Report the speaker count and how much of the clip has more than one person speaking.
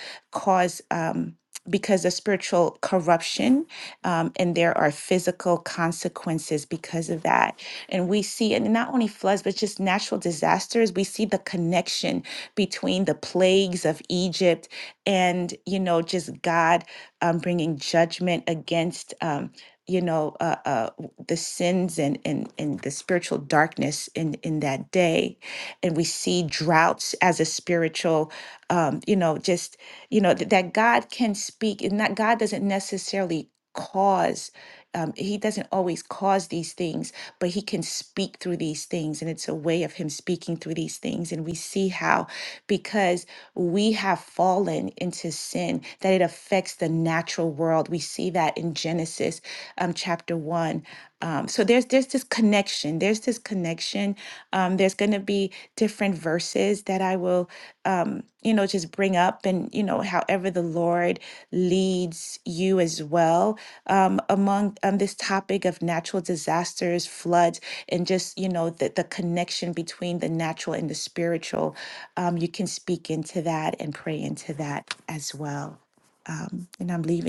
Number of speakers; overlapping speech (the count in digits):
1, no overlap